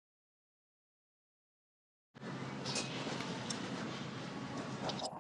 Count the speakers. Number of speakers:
0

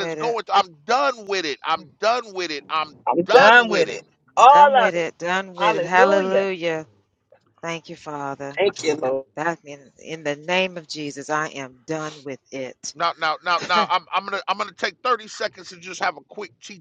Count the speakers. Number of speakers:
3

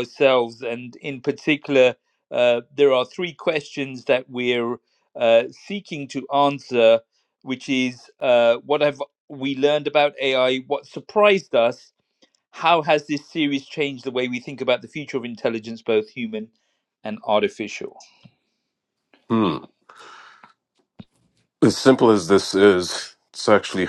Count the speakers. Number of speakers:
2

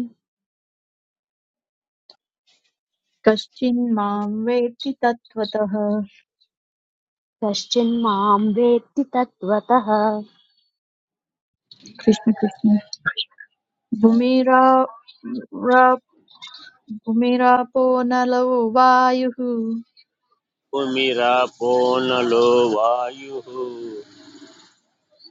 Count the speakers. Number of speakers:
3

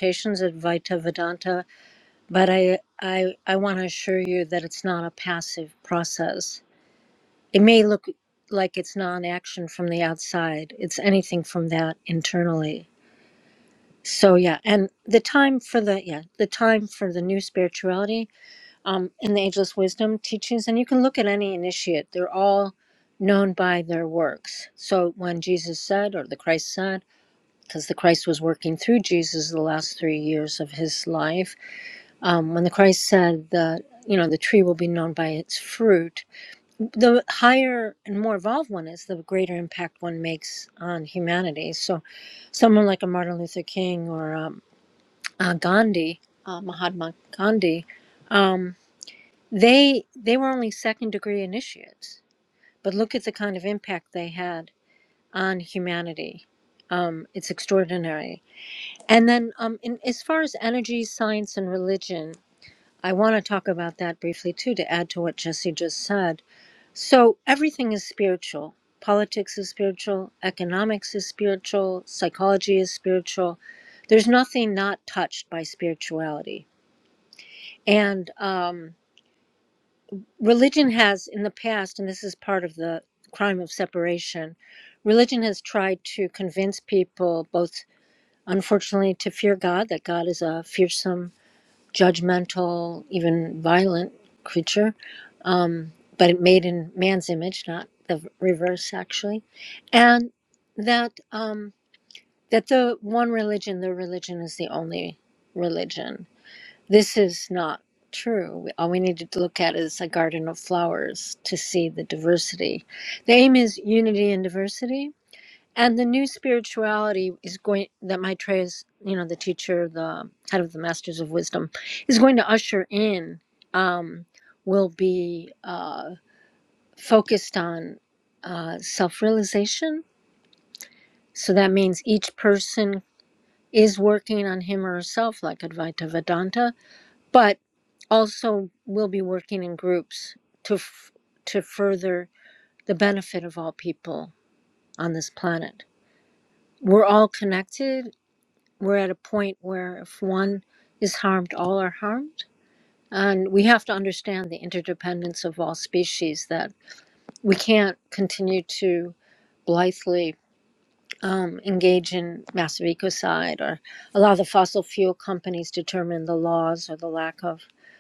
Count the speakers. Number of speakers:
1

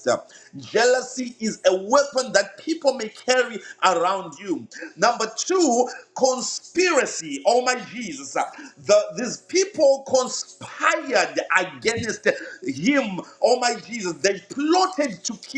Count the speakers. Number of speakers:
1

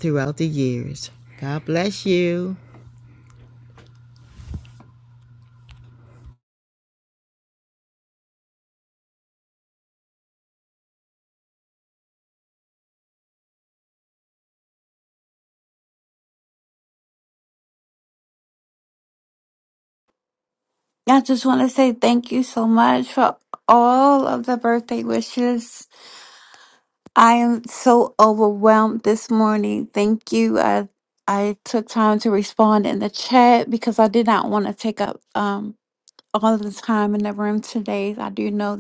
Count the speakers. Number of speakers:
2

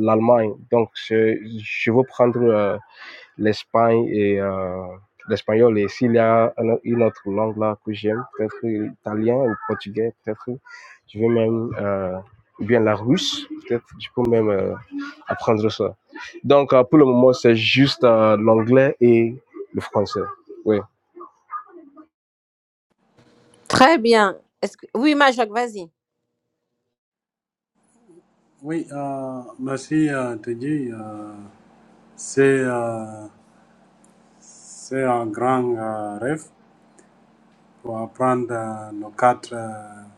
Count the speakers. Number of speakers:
3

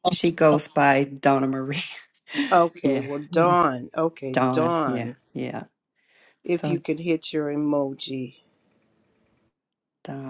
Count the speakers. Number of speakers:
2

